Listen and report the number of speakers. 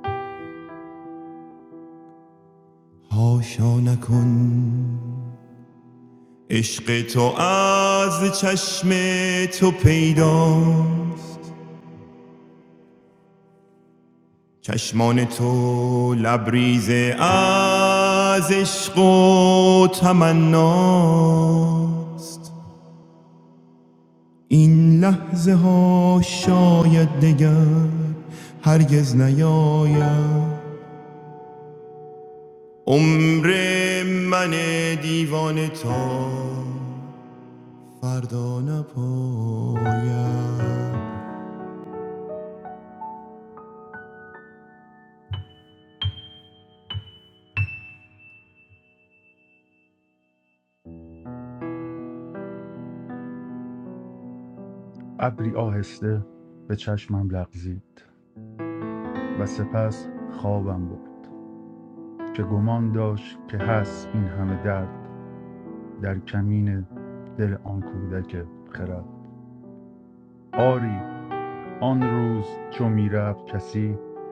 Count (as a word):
two